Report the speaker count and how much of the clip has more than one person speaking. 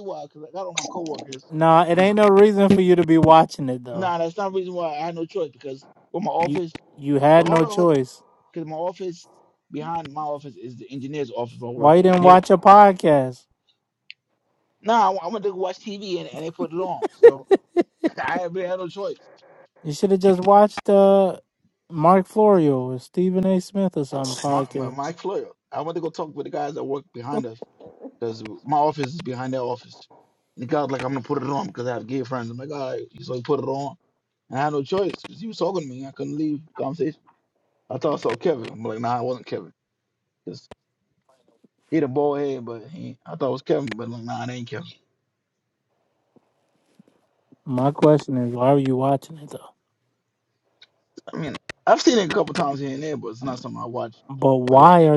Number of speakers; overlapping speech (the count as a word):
two, about 4%